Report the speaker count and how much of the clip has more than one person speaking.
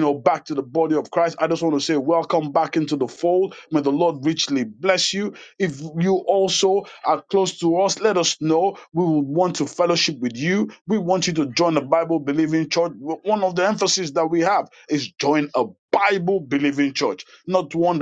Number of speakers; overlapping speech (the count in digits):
1, no overlap